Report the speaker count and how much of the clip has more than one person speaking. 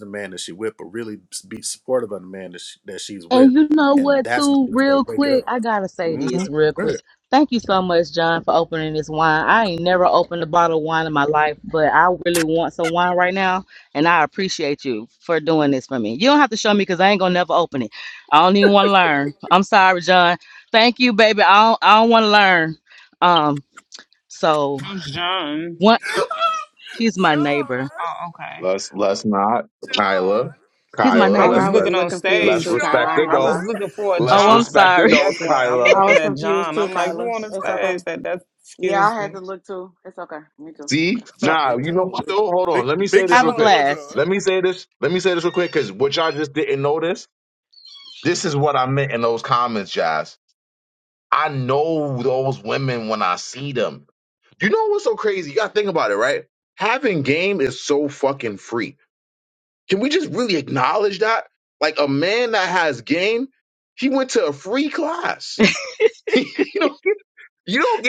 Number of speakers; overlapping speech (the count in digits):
5, about 19%